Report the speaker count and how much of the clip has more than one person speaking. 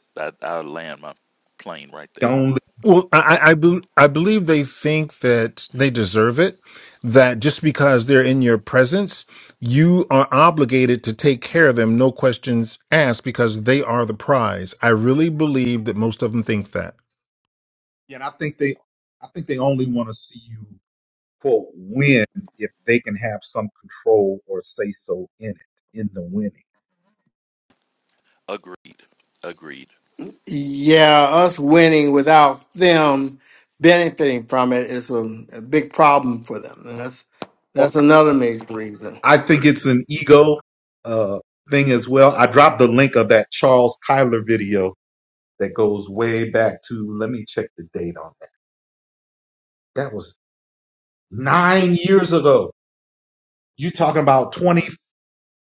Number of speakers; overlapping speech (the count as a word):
four, under 1%